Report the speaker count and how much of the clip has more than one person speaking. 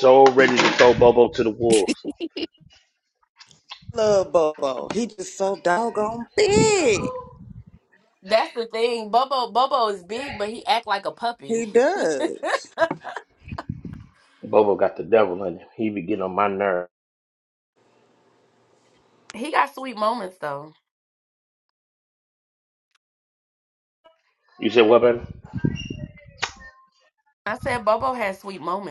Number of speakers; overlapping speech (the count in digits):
3, under 1%